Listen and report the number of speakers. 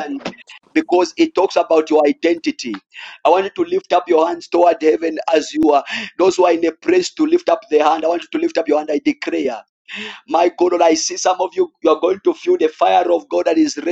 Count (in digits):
1